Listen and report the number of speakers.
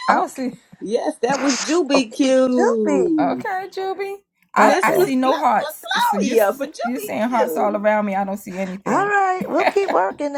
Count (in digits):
3